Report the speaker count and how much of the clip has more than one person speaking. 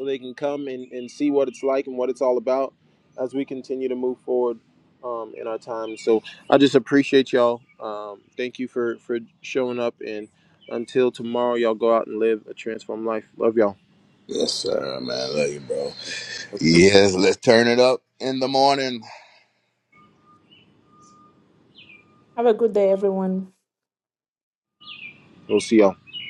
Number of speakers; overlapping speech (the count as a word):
three, no overlap